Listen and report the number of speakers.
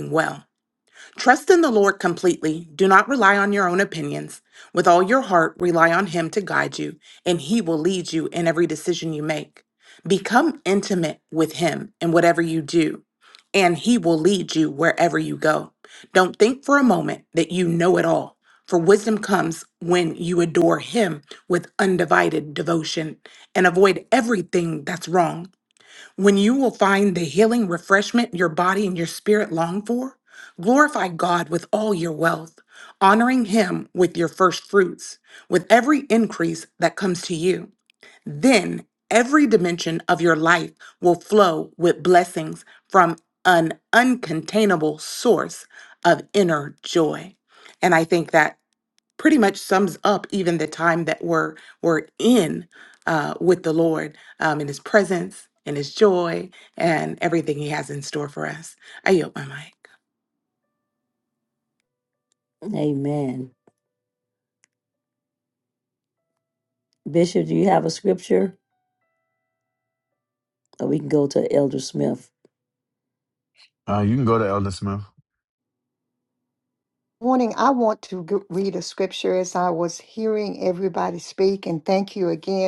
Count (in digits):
4